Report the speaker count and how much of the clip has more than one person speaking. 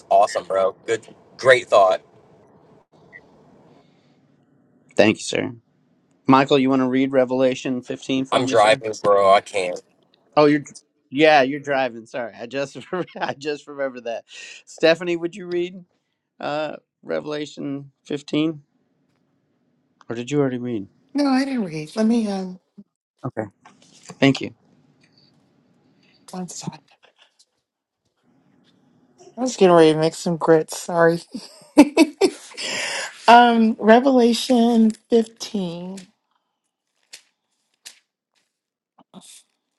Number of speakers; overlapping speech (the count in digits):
3, about 1%